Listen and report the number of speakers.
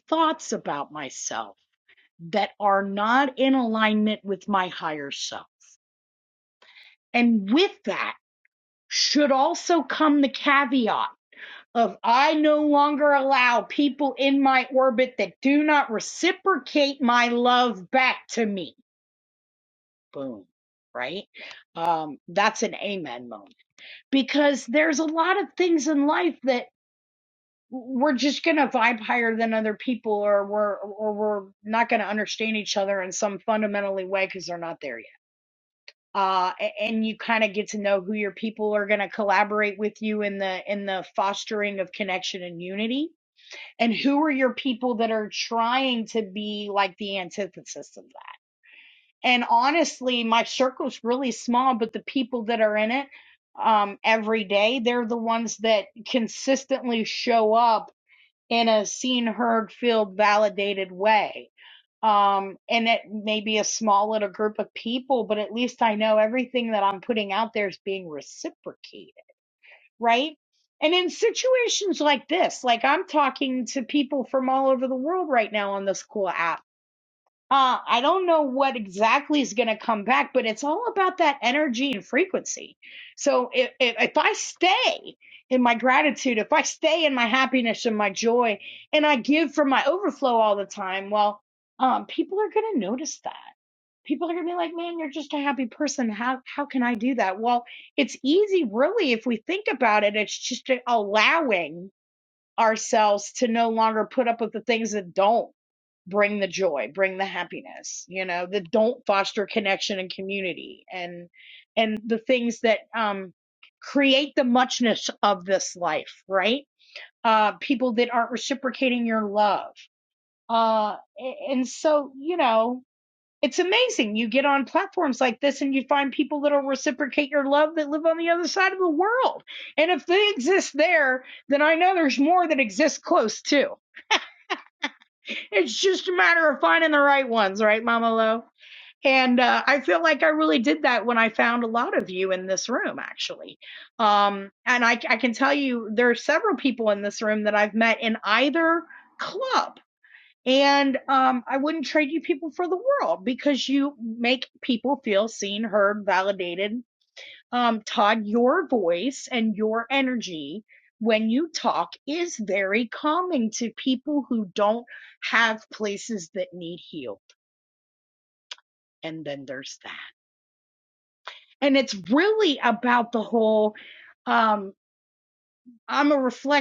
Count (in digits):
1